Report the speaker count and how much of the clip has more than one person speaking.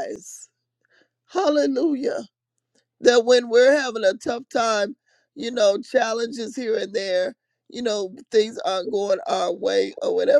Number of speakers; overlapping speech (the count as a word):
one, no overlap